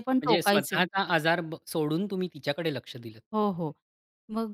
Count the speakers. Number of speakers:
2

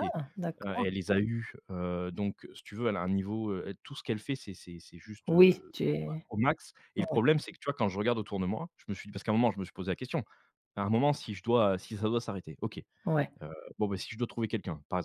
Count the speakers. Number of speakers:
2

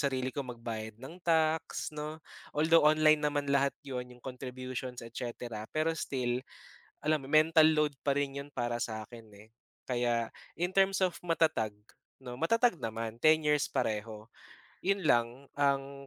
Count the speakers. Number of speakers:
1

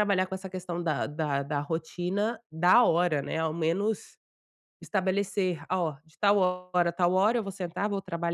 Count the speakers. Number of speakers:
1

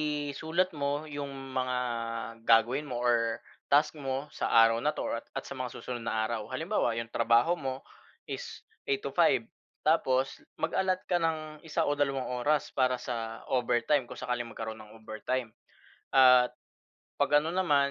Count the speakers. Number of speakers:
1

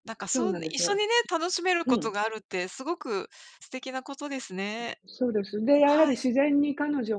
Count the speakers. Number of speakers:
2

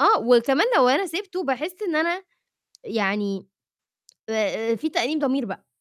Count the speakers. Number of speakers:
1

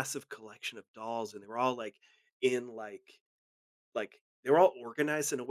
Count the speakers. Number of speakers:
1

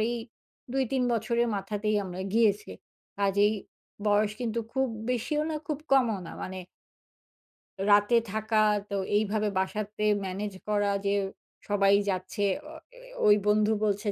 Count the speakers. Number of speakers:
1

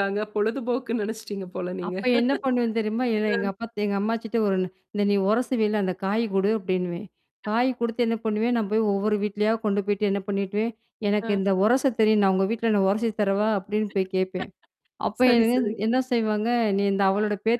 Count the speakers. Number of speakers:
2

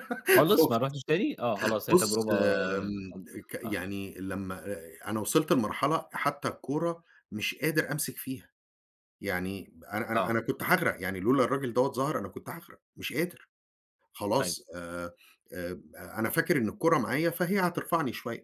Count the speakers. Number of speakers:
2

